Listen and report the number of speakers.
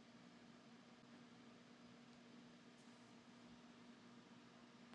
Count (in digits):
0